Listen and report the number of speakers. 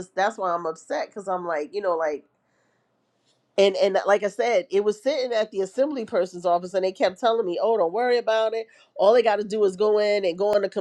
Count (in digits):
1